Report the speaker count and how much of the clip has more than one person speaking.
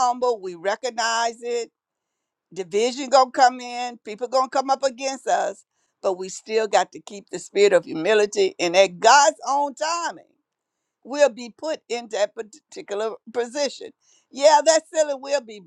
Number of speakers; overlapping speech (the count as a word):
one, no overlap